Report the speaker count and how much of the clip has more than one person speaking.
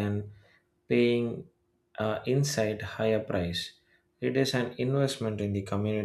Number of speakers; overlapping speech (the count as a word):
one, no overlap